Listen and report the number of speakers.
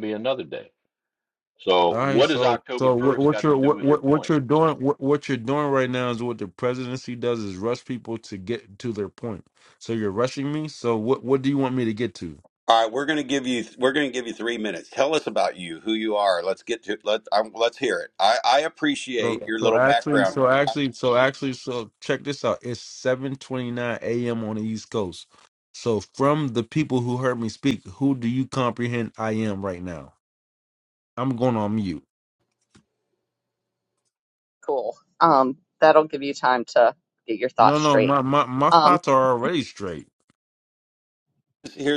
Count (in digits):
4